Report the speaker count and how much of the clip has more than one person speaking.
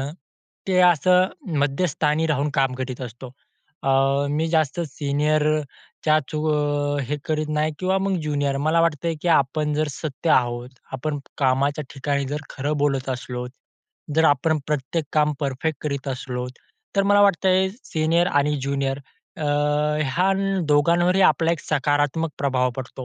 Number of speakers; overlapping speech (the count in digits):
1, no overlap